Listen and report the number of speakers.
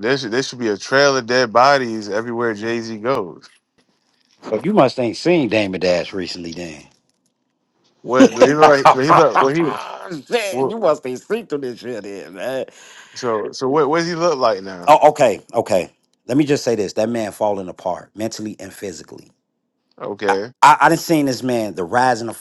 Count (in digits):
2